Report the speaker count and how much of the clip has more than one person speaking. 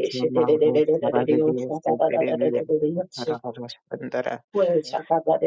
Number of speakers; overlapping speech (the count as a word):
two, about 52%